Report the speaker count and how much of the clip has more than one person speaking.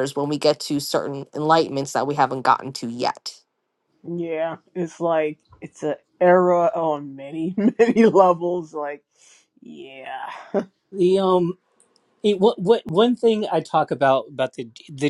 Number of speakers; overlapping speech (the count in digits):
3, no overlap